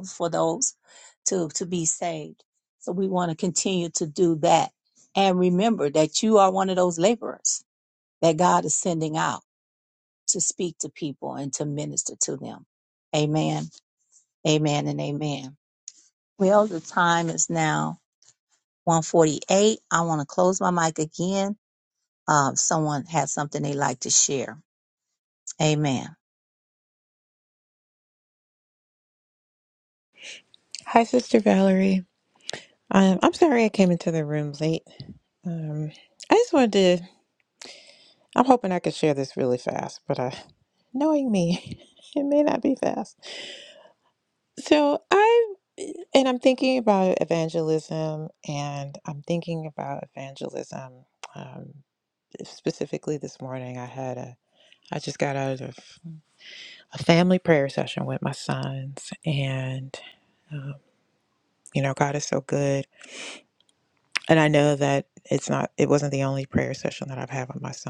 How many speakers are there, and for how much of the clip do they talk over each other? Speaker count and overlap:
two, no overlap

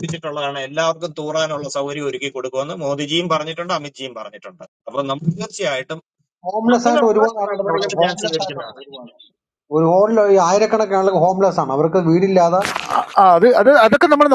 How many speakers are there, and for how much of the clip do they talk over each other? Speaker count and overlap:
three, about 14%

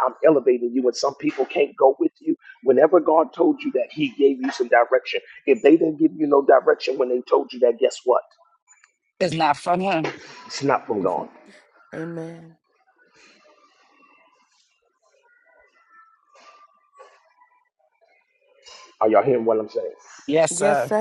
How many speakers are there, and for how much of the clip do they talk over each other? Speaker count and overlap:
three, about 3%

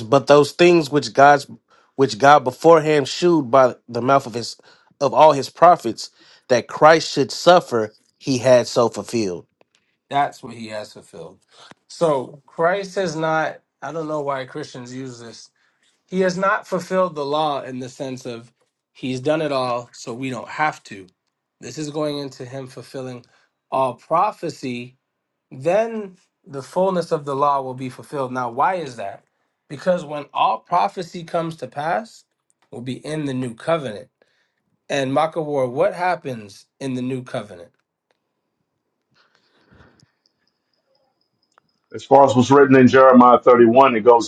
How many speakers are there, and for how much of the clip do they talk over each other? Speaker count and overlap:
three, no overlap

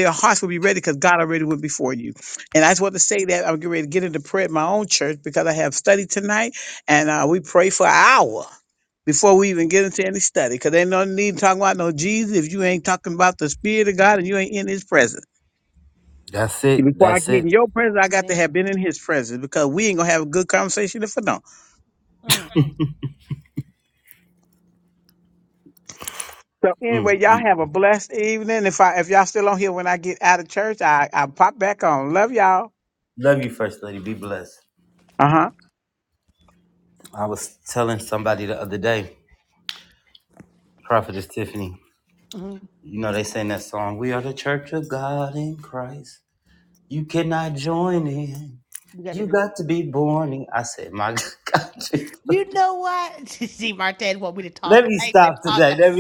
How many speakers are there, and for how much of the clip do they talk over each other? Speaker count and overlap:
three, about 5%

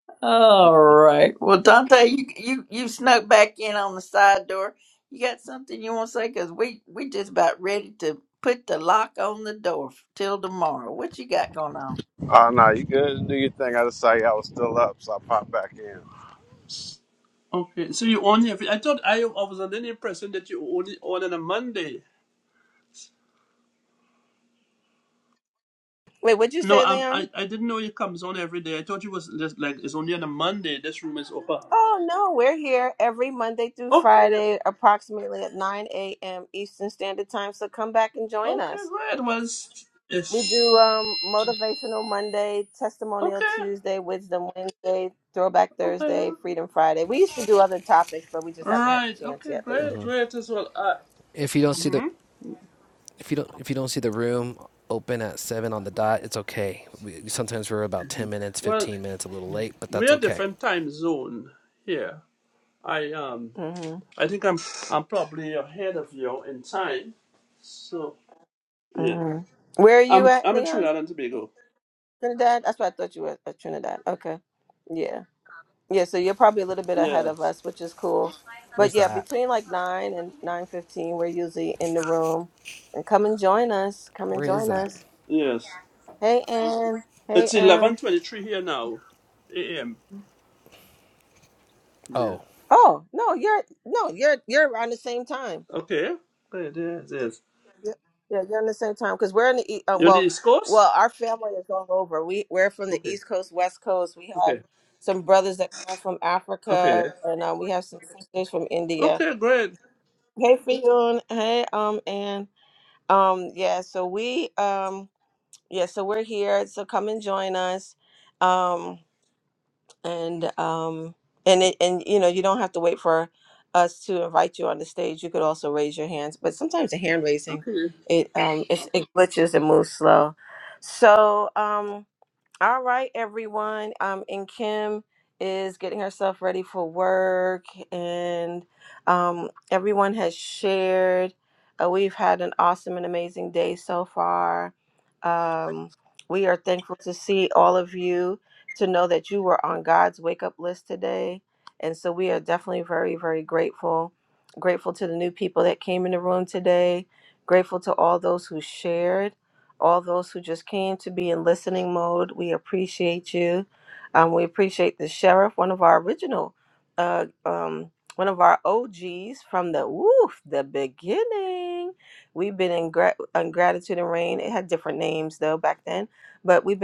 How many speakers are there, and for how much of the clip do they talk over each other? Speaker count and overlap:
five, about 5%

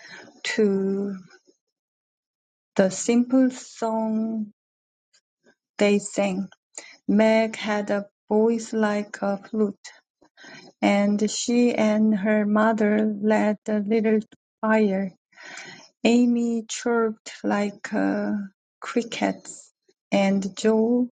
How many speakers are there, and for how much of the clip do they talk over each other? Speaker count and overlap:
one, no overlap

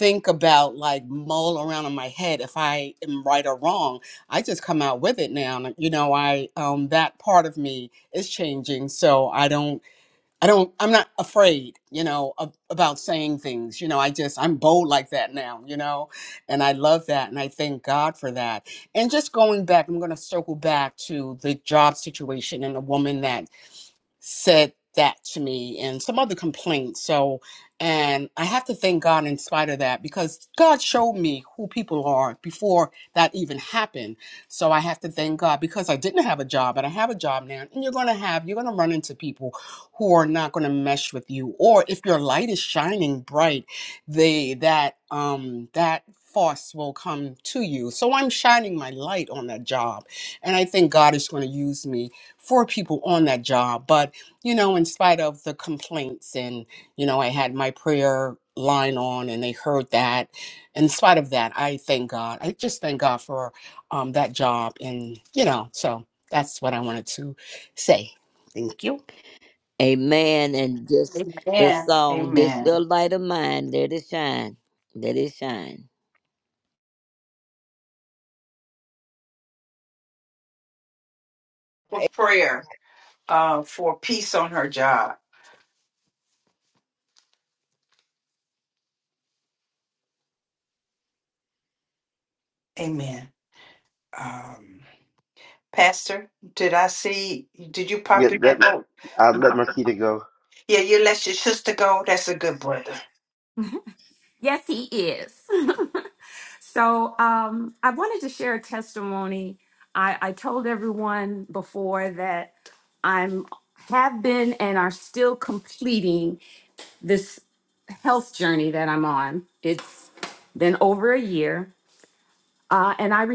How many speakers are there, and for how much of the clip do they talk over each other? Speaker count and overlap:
five, about 1%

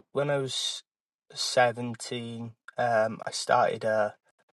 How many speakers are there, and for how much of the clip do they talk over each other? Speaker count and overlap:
one, no overlap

